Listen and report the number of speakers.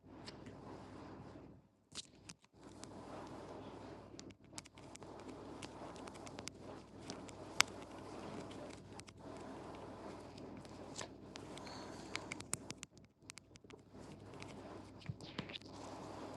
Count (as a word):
zero